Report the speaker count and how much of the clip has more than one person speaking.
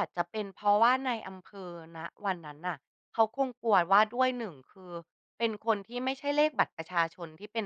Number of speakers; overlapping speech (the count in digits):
1, no overlap